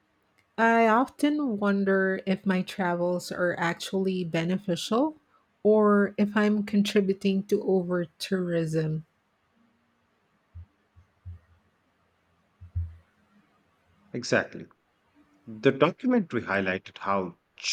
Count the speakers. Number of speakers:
2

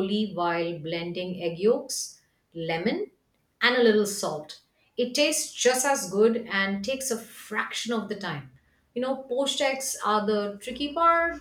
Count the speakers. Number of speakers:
1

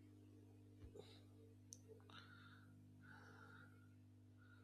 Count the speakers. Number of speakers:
0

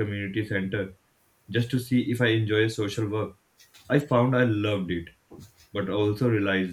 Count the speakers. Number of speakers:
1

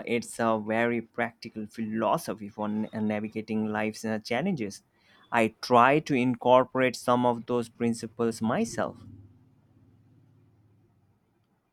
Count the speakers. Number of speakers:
1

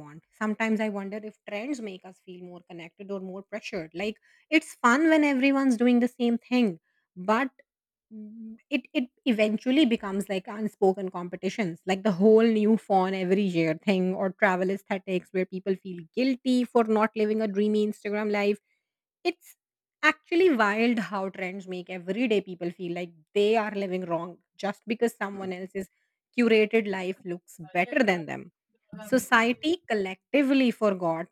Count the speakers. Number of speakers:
1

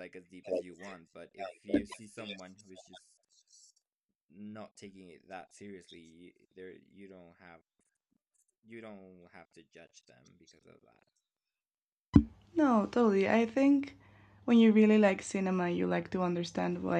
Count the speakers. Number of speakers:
2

